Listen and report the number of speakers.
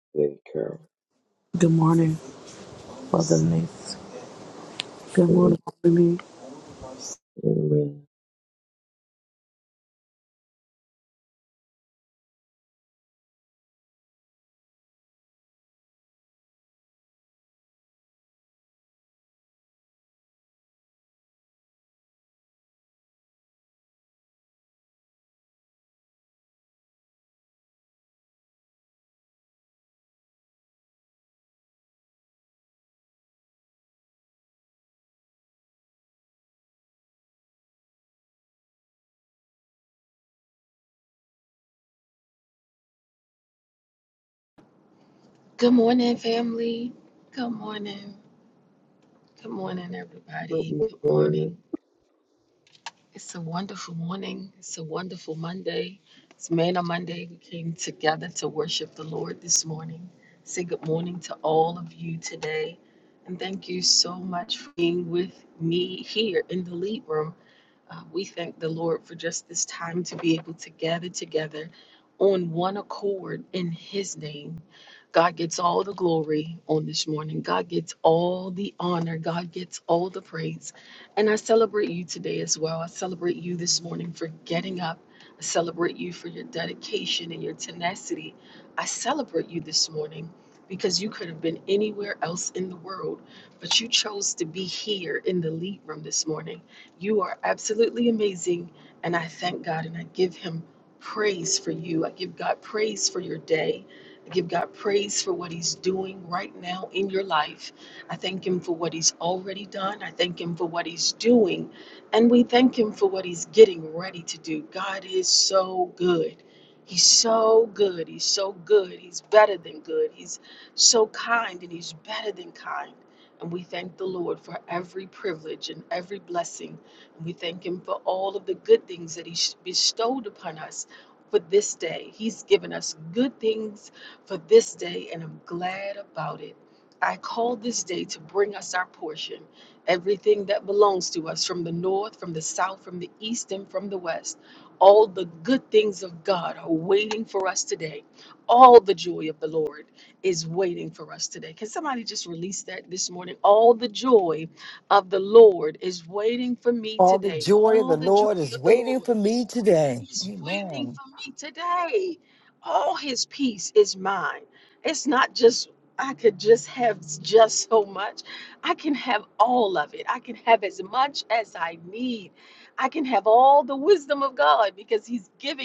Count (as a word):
four